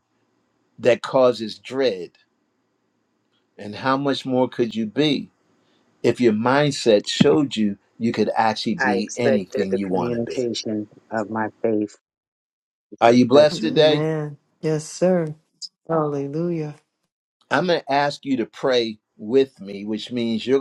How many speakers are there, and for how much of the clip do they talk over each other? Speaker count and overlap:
3, about 11%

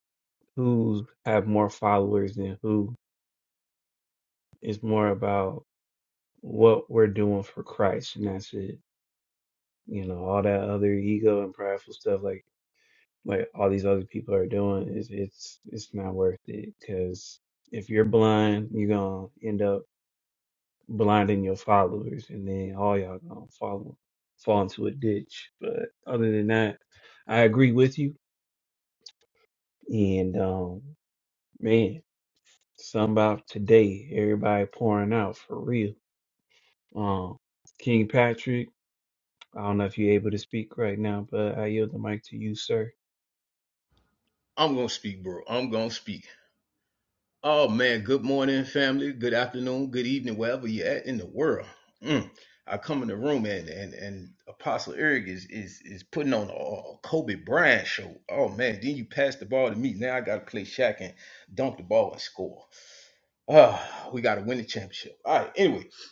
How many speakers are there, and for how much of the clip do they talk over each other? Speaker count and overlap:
2, no overlap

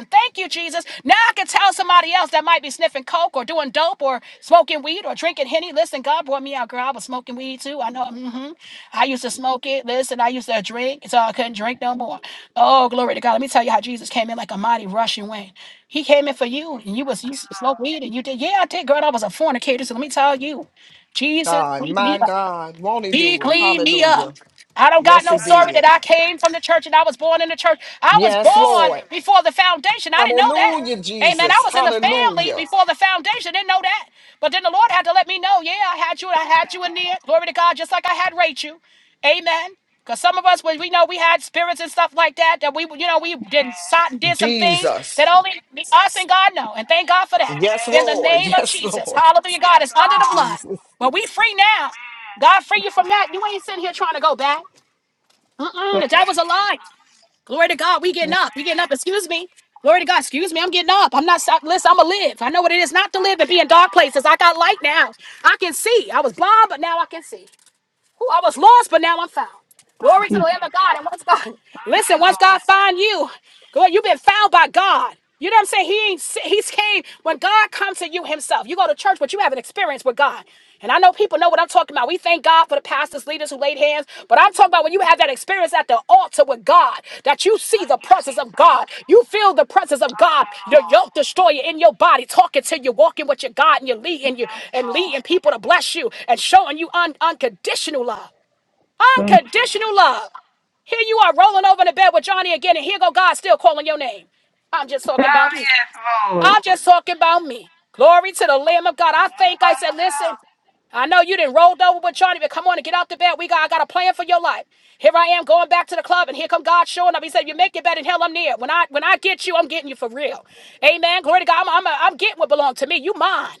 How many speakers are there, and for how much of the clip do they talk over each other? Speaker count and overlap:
3, about 19%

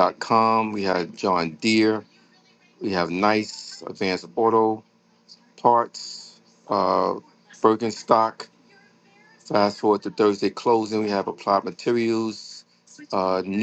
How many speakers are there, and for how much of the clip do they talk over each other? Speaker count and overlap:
1, no overlap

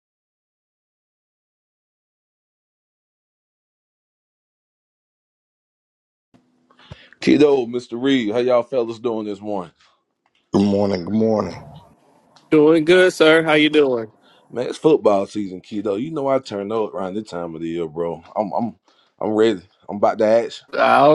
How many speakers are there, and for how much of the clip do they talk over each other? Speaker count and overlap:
3, no overlap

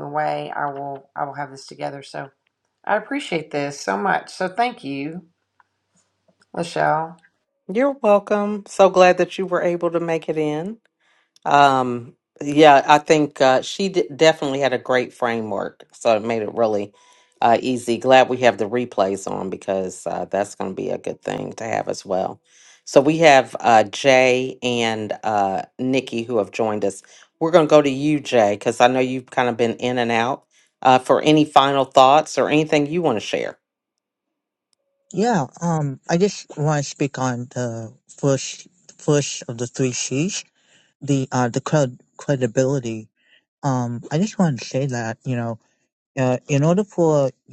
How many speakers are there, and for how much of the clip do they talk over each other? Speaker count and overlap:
3, no overlap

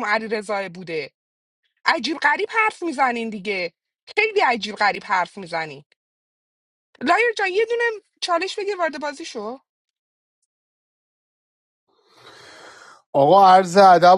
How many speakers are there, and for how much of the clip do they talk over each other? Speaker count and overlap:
2, no overlap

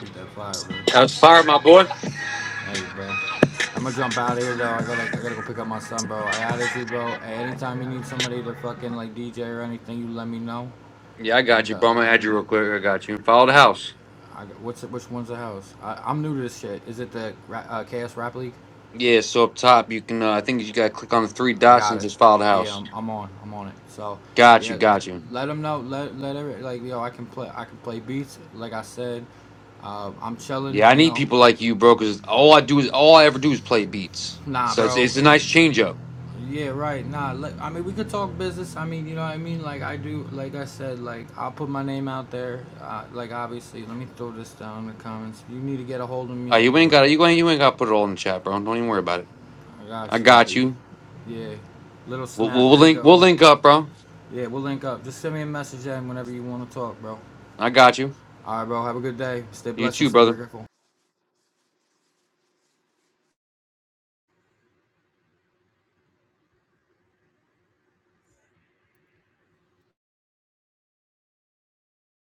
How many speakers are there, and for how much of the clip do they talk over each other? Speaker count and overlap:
2, about 6%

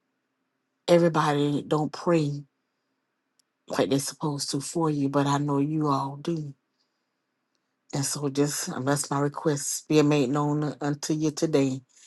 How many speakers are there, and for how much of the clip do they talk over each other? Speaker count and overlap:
1, no overlap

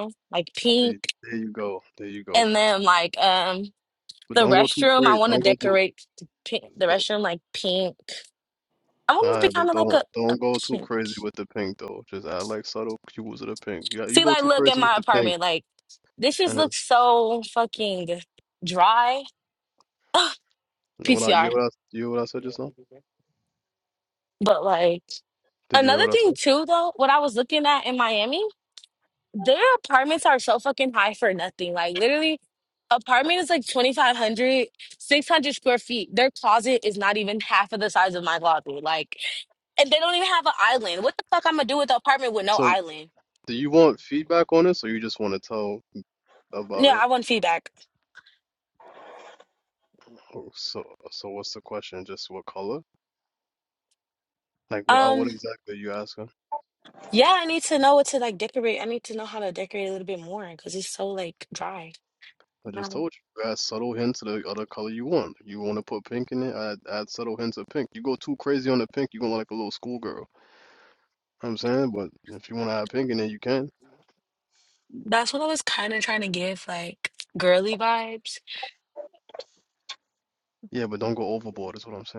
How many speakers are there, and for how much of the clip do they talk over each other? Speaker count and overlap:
2, about 8%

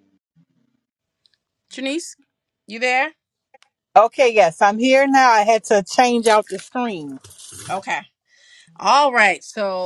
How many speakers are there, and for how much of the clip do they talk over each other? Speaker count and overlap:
2, no overlap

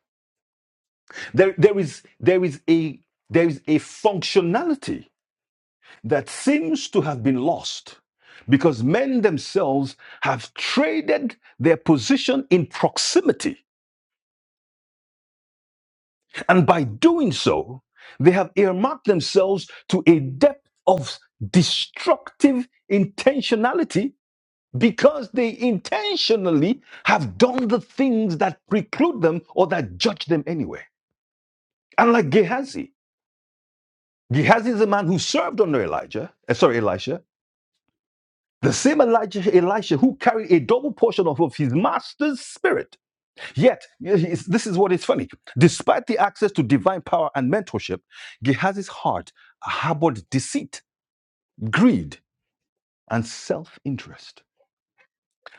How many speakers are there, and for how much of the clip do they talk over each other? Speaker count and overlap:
1, no overlap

